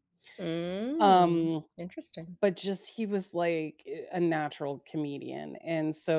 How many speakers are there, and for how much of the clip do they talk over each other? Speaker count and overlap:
2, about 7%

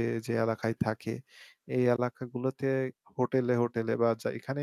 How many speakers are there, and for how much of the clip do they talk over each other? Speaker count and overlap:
1, no overlap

